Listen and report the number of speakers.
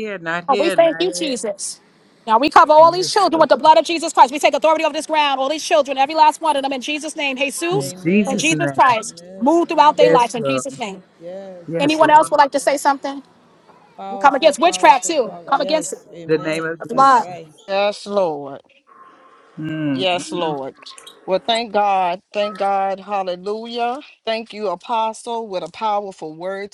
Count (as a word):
four